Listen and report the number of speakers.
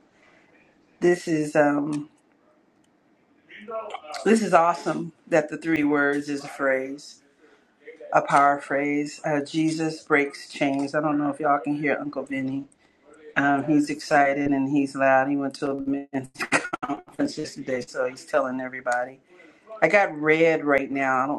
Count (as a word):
one